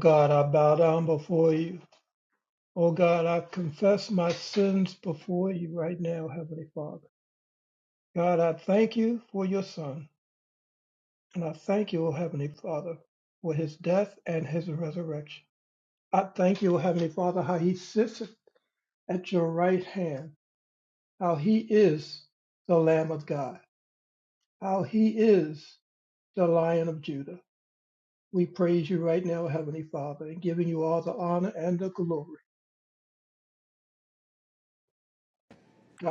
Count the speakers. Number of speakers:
one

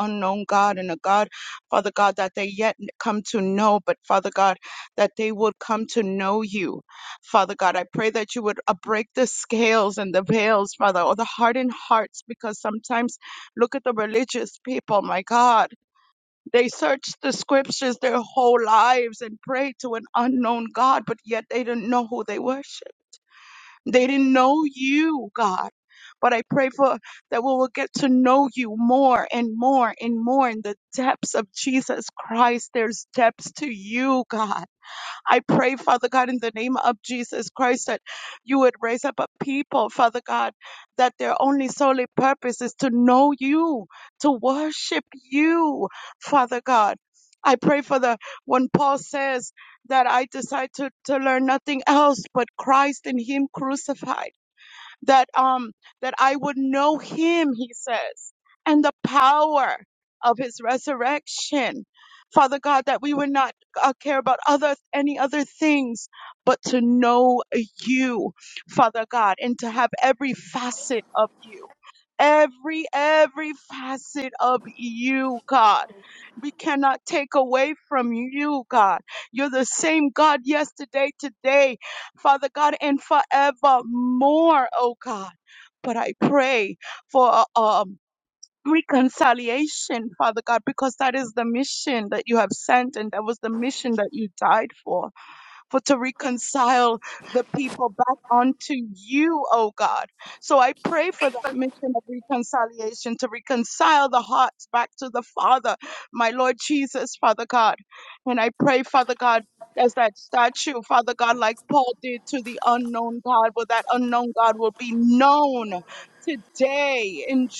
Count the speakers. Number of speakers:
one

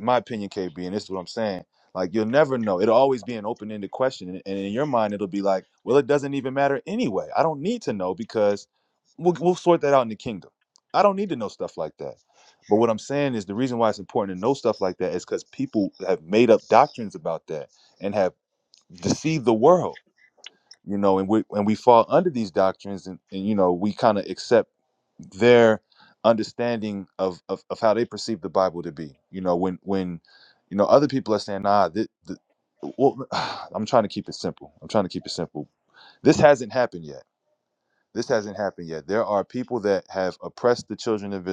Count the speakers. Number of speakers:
one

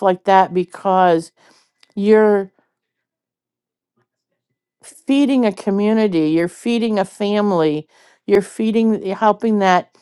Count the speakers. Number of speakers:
one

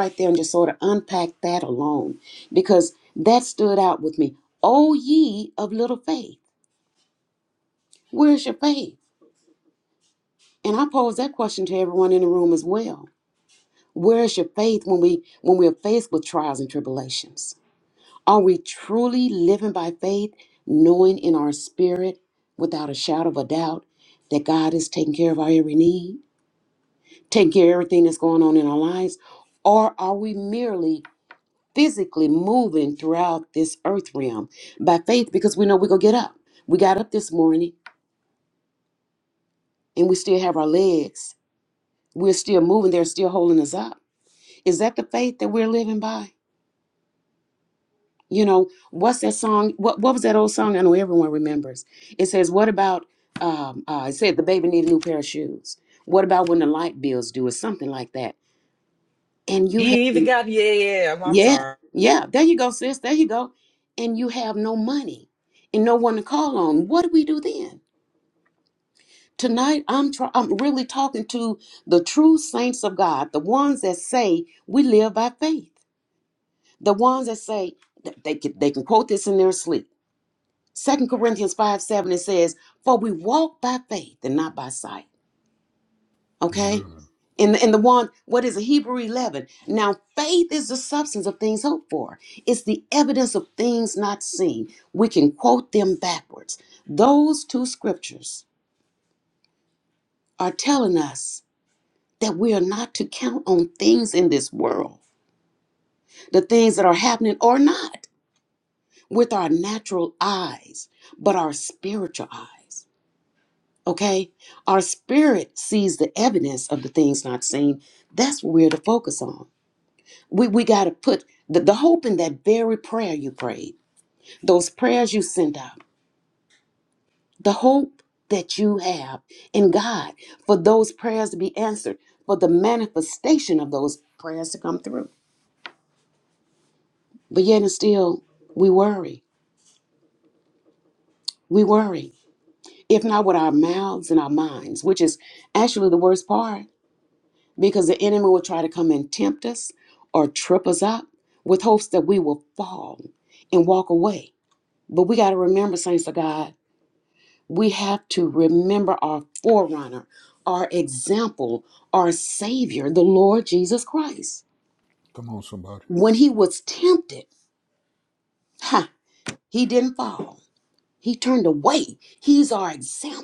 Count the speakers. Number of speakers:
three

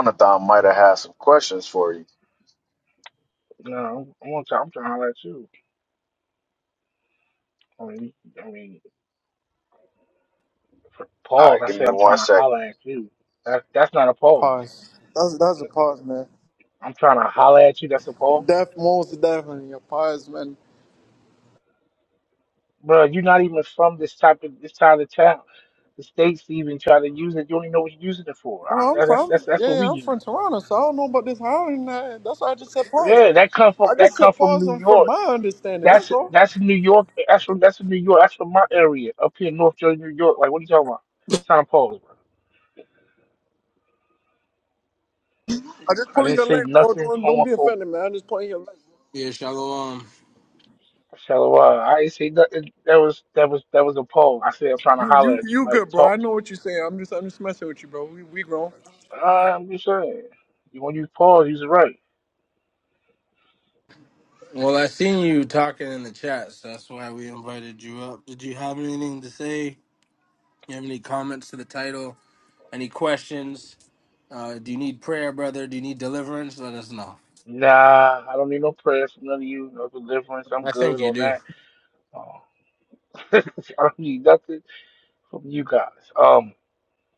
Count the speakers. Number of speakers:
four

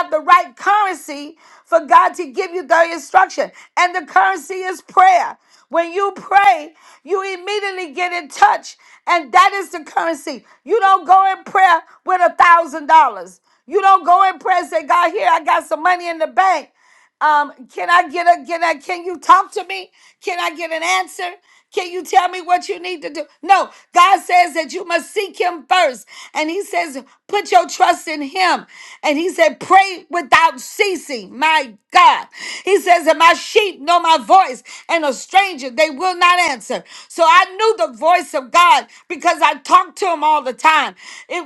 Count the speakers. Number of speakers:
one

